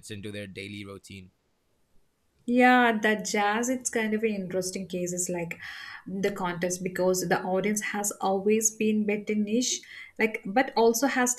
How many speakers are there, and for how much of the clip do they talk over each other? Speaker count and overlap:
two, no overlap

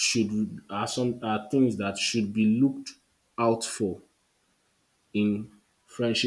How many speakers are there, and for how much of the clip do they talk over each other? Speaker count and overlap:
one, no overlap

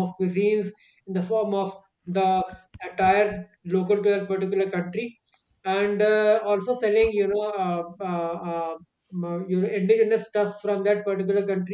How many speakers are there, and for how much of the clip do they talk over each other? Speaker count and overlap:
one, no overlap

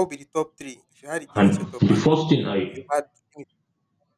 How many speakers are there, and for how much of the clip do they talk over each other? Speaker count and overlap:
two, about 20%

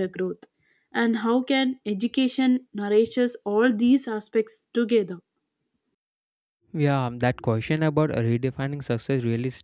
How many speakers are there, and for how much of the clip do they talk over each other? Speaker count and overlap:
two, no overlap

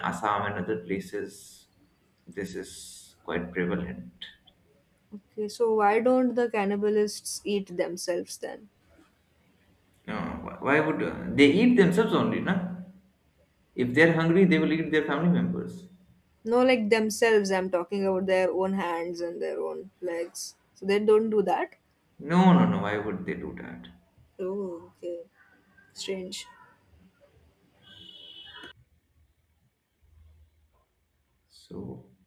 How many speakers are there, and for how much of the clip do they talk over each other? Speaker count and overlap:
two, no overlap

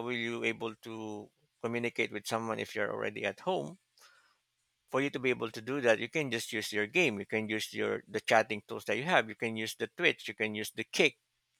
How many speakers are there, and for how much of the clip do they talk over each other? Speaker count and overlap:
one, no overlap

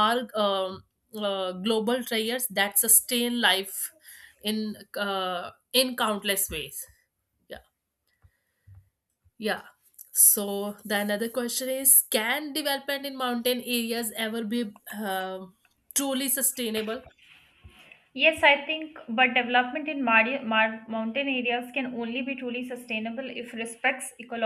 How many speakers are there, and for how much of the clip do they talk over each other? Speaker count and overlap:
two, no overlap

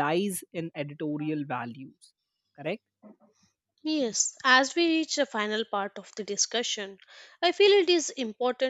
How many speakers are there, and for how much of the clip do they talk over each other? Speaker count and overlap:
two, no overlap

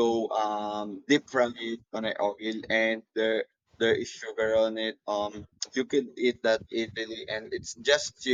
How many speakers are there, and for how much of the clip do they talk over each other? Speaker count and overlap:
one, no overlap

